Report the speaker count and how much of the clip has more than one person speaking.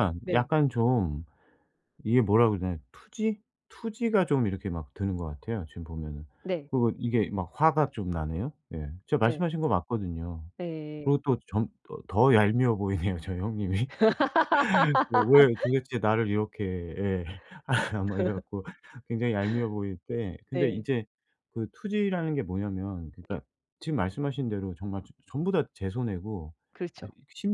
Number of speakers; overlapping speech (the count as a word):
two, about 3%